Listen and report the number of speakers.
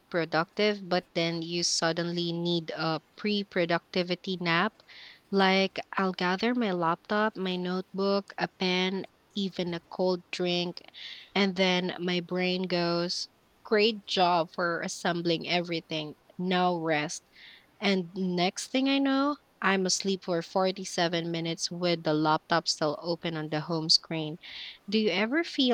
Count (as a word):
one